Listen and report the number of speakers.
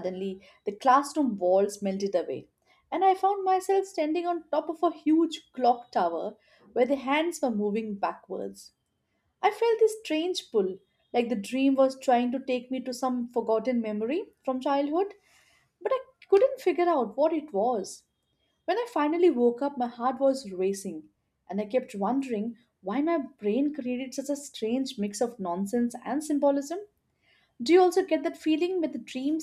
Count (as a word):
one